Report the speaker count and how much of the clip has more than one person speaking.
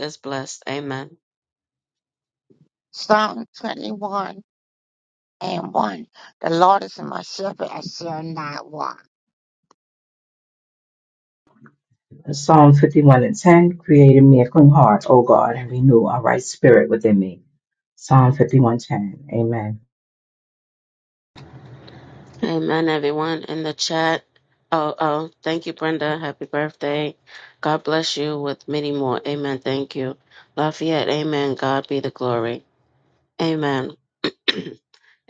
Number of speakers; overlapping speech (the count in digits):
3, no overlap